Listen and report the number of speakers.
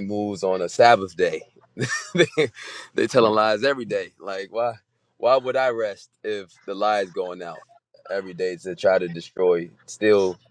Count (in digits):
1